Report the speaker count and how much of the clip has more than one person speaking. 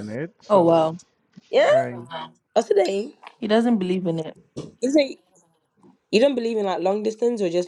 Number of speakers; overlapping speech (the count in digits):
3, about 8%